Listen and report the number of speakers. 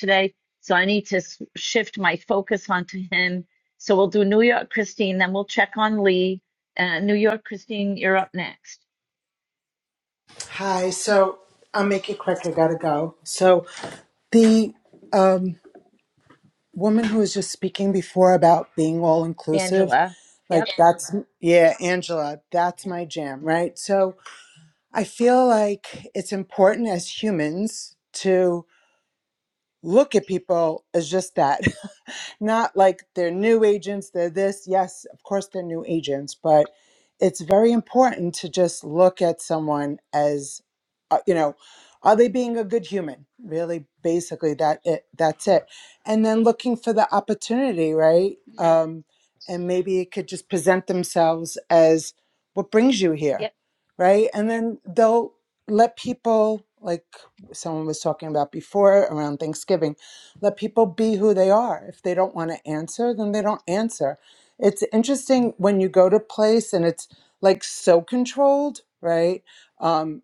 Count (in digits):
2